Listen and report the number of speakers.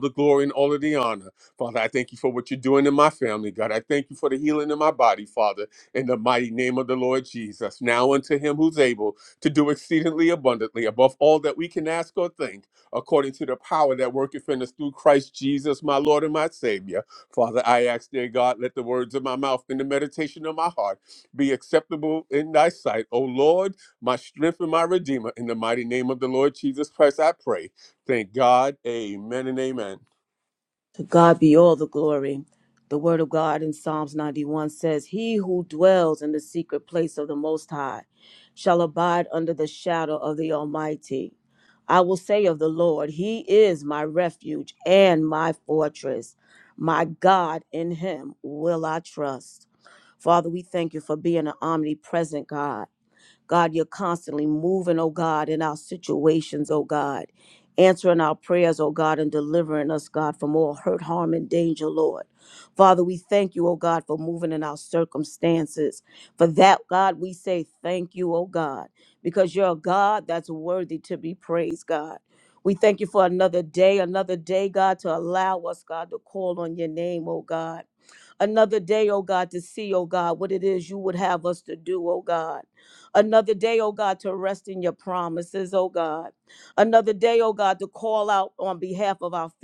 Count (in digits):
2